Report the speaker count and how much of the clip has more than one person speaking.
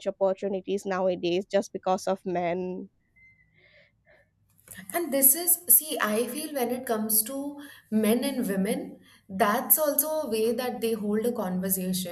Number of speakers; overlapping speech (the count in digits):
2, no overlap